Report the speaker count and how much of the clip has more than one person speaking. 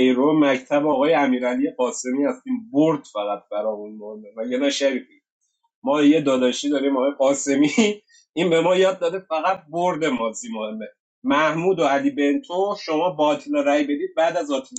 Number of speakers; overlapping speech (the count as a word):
one, no overlap